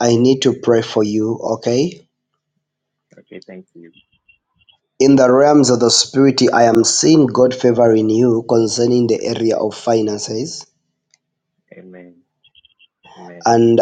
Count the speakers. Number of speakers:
2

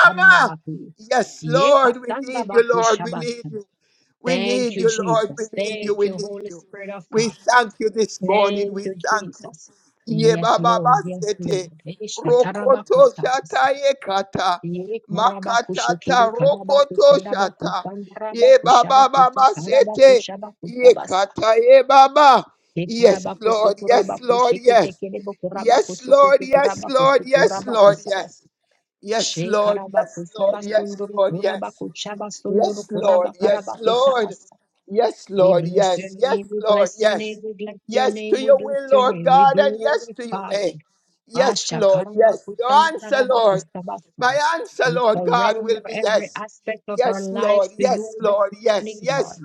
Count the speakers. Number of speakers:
2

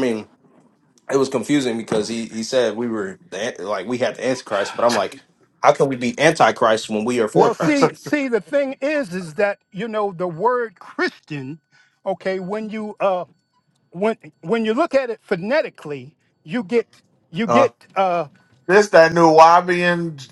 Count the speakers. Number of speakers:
3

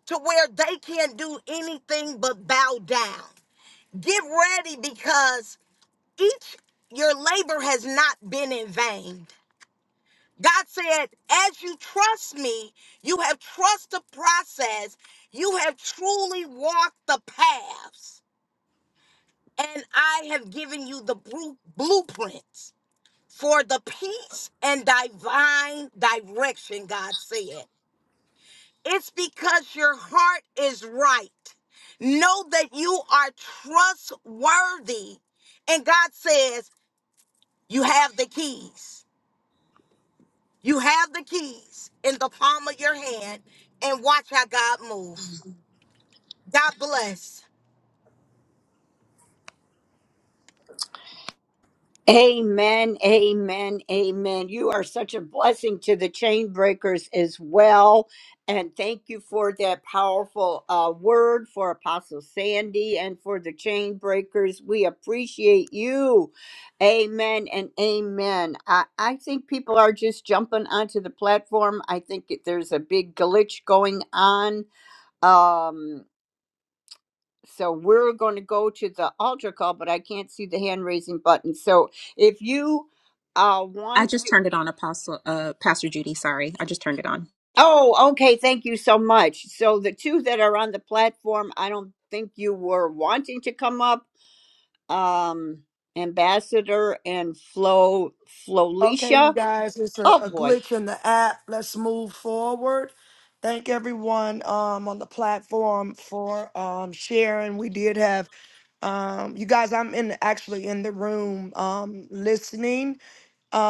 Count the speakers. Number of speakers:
4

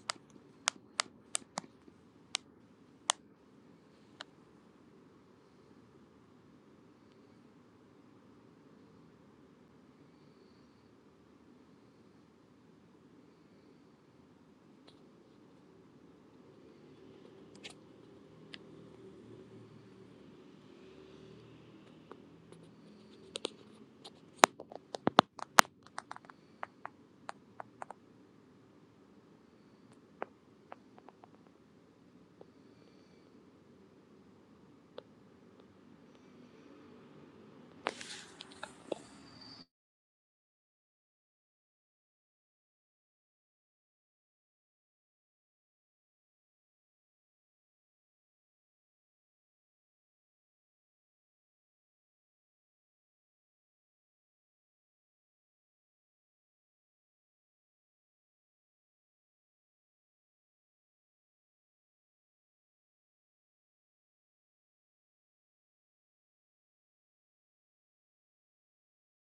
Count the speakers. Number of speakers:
0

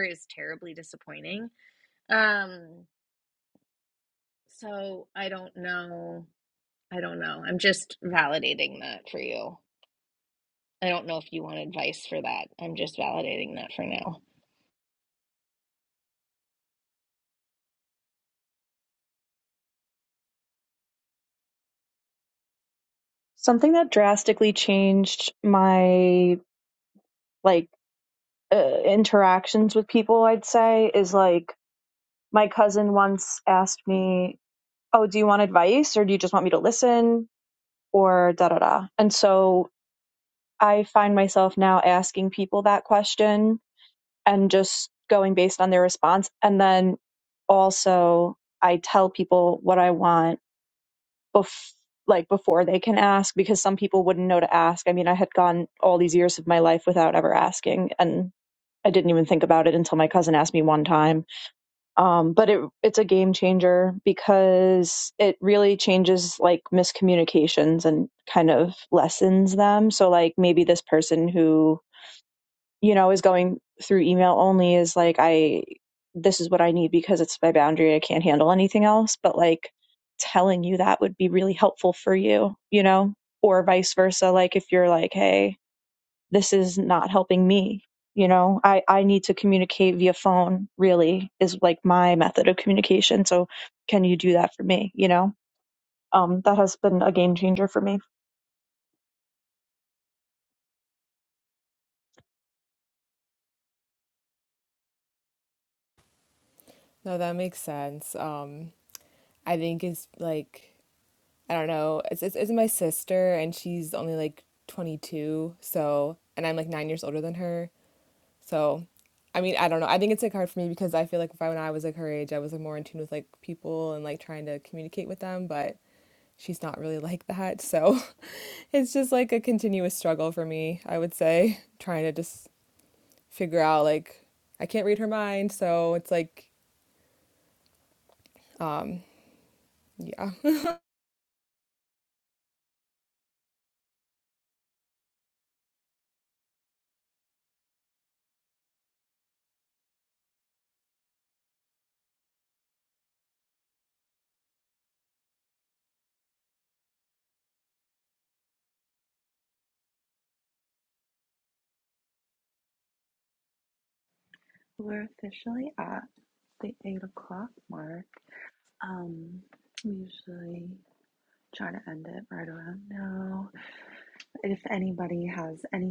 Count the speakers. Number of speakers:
4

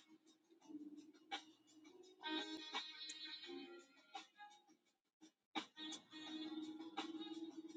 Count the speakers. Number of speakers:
0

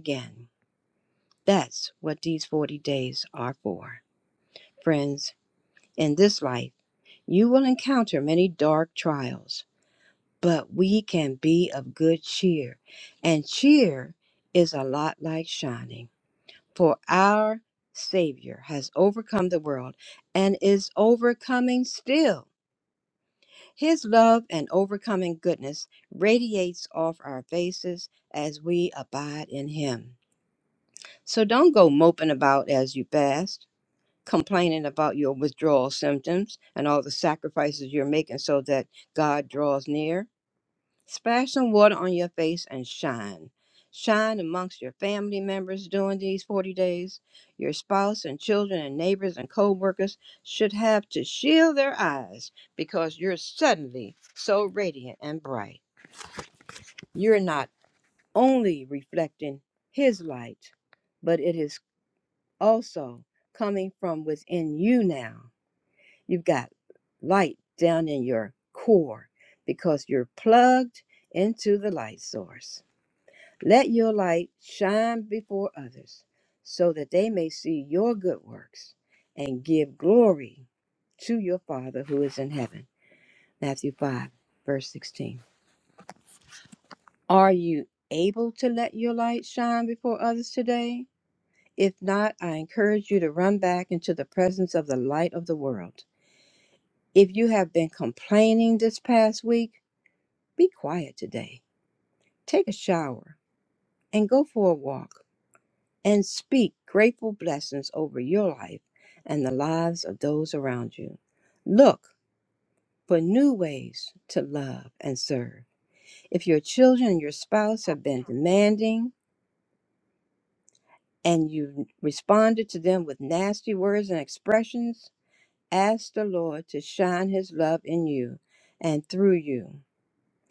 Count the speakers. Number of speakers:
1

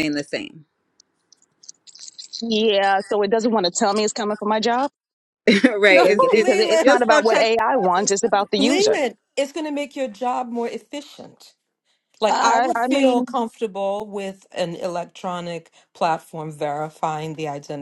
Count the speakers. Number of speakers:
3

